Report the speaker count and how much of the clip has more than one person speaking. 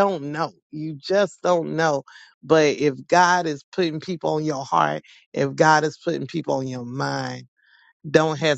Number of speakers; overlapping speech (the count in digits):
1, no overlap